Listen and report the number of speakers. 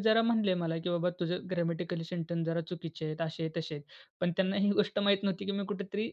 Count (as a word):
one